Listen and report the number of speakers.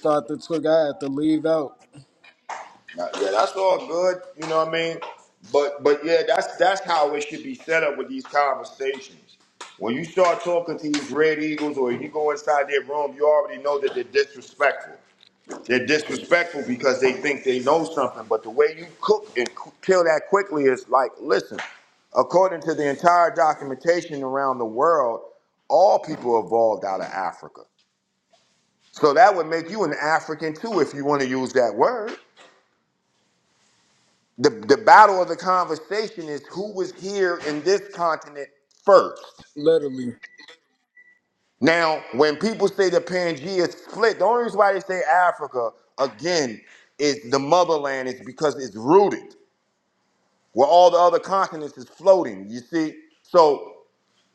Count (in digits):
2